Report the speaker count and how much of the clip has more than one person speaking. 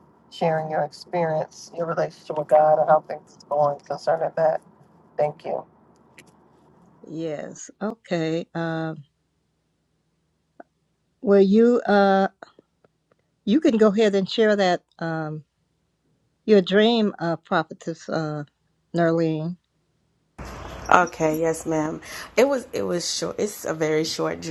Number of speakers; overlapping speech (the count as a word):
three, no overlap